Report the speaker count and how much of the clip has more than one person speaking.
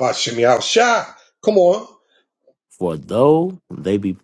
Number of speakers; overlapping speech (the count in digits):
2, no overlap